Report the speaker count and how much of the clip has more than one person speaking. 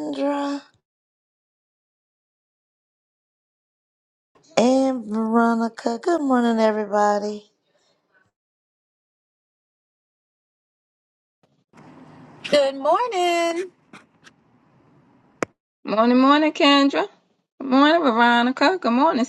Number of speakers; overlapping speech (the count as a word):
three, no overlap